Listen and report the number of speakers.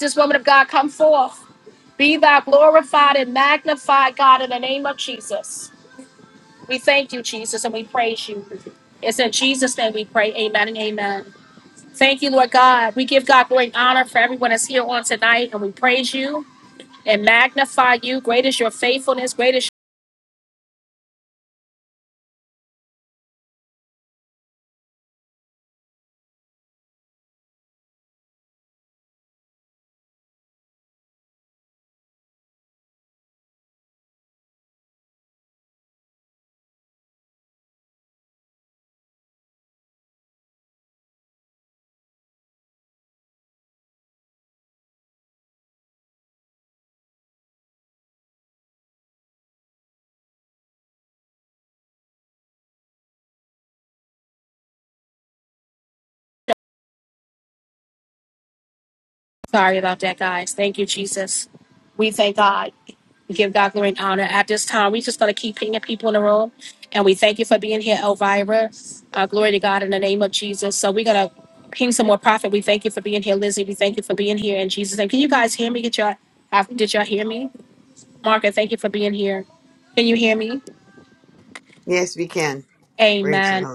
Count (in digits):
2